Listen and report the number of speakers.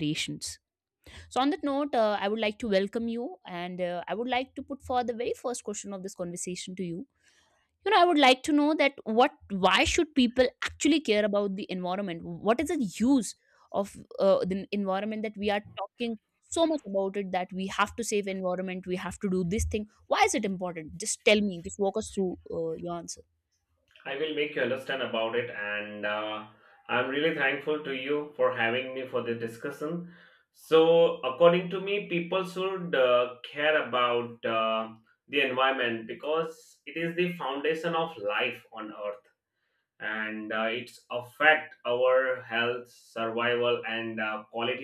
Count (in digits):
2